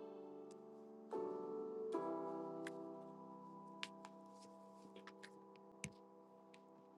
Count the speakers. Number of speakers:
zero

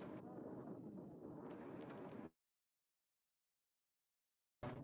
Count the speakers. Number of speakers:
zero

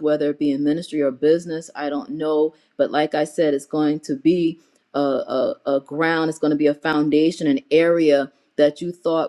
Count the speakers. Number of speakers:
one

